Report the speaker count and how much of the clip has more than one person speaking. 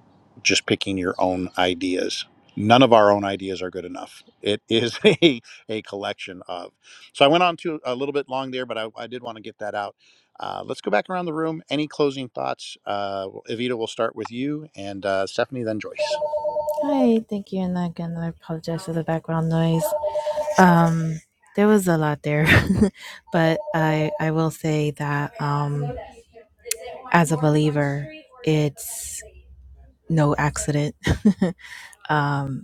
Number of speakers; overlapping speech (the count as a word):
two, no overlap